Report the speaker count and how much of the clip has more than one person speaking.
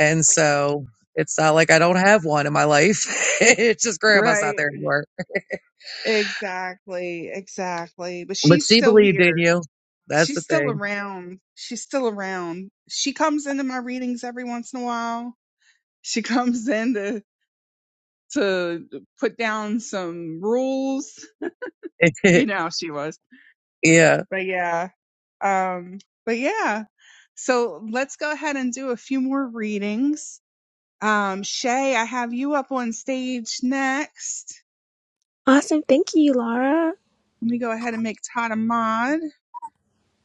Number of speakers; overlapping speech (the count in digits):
3, about 5%